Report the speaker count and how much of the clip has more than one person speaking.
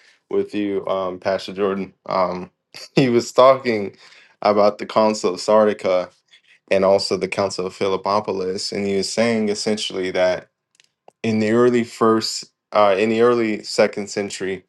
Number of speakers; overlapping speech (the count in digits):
1, no overlap